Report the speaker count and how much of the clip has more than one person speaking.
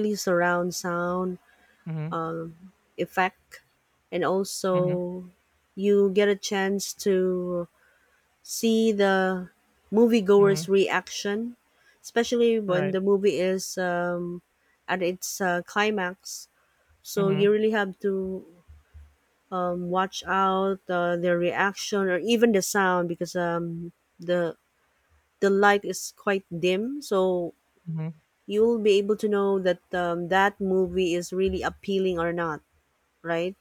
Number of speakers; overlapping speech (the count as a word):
two, about 3%